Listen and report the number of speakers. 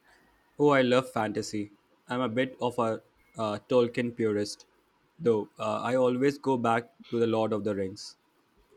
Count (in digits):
1